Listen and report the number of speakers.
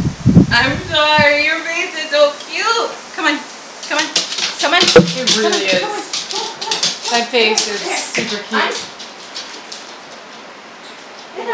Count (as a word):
two